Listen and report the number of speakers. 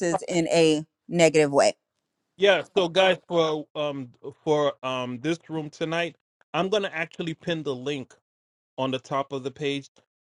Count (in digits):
2